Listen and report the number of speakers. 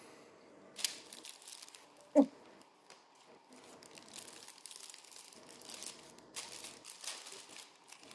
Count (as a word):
zero